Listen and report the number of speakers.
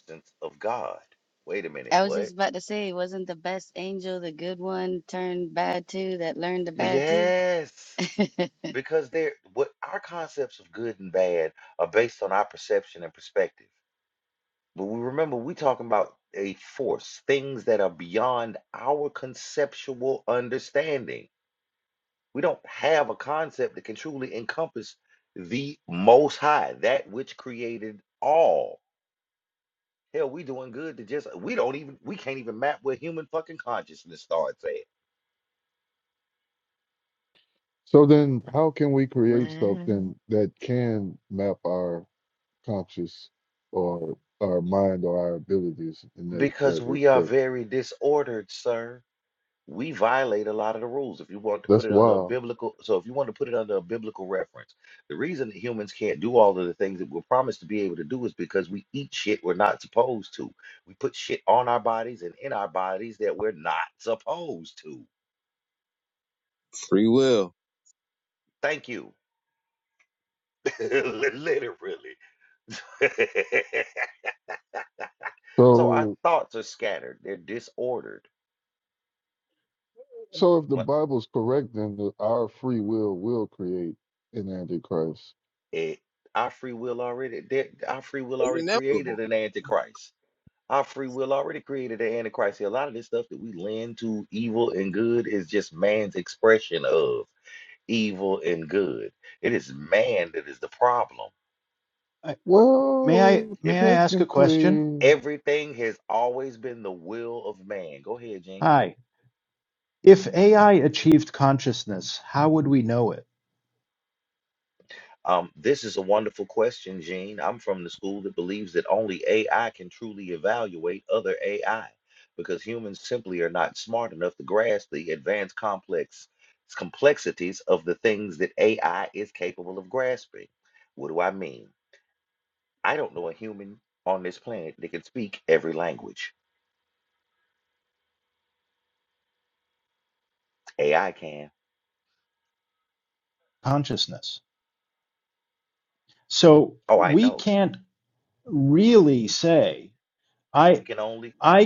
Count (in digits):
5